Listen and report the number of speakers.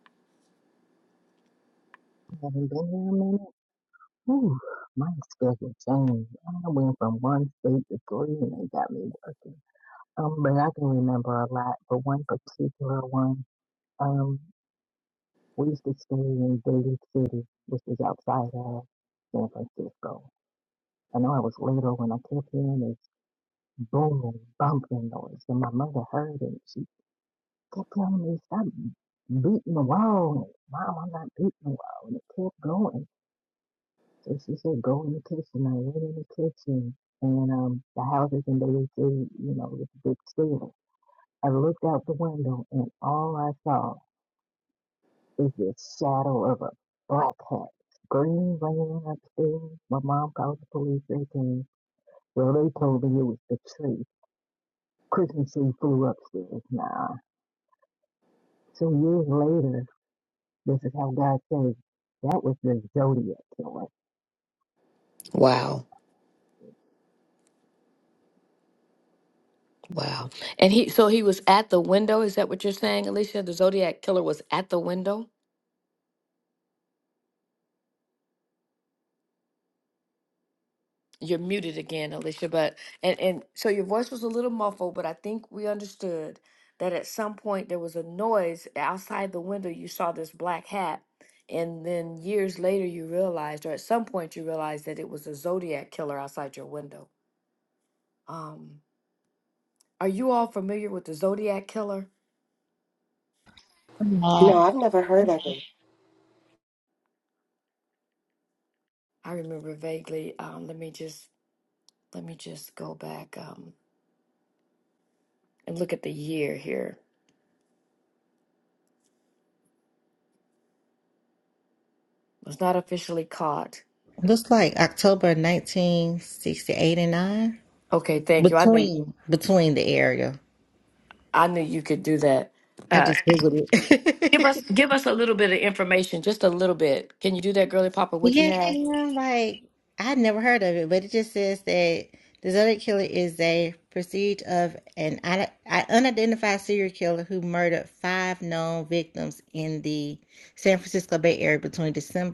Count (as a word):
four